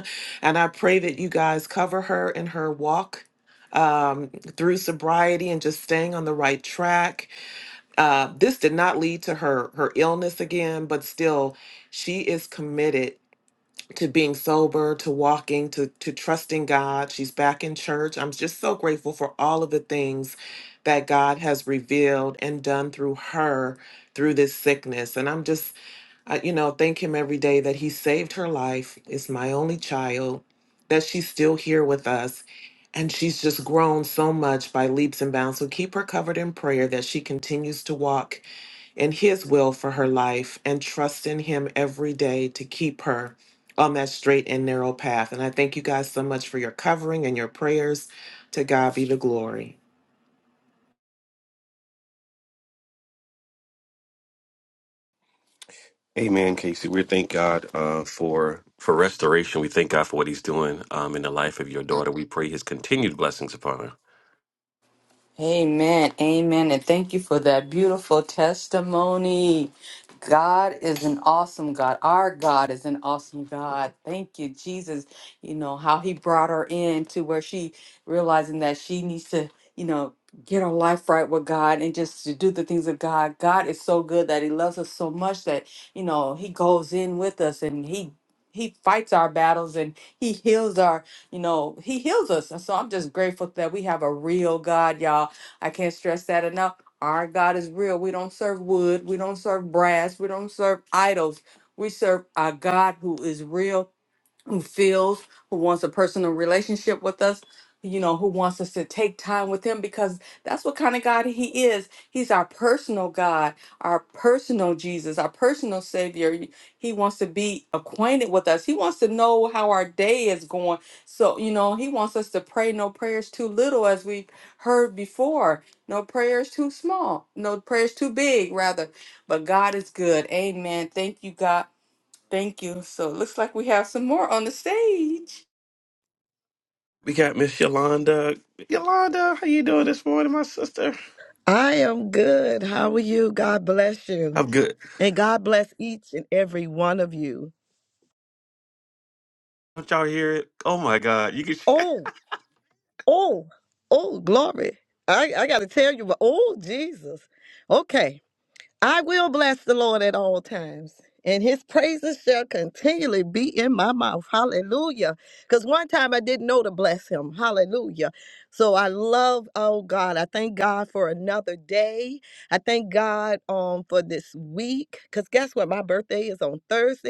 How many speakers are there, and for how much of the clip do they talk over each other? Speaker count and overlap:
four, under 1%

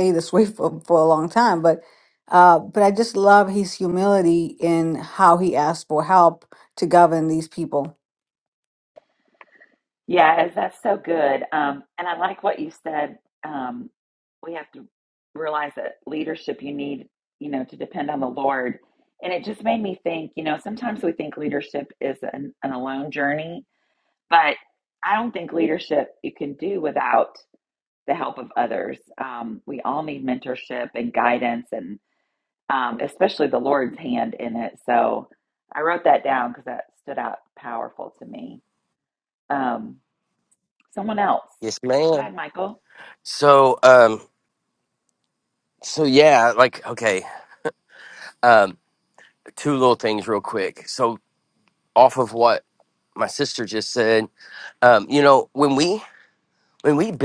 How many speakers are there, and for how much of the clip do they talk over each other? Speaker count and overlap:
three, under 1%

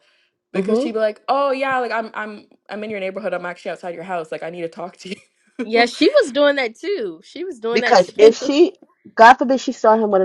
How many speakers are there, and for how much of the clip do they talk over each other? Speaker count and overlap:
three, about 9%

